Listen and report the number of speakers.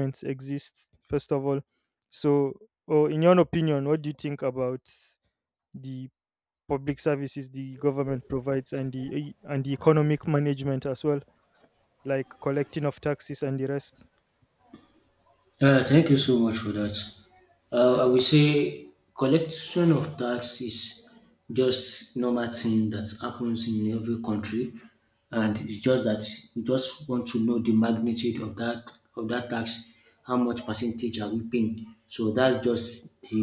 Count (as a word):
two